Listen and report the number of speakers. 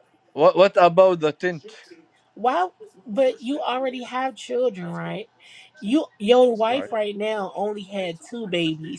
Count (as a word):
two